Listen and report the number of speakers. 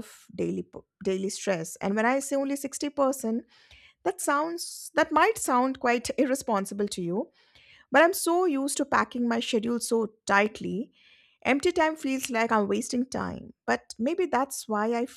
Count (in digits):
1